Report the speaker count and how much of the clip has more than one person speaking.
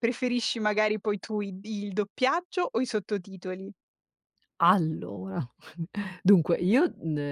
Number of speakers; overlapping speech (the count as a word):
two, no overlap